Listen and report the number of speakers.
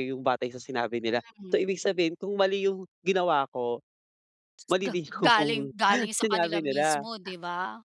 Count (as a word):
two